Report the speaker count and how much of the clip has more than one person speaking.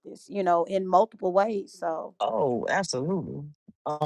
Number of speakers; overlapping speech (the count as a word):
two, no overlap